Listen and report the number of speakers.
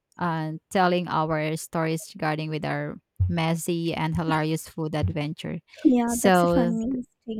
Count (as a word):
two